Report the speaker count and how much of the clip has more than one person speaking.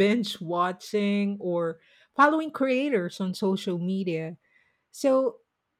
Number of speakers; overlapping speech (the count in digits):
1, no overlap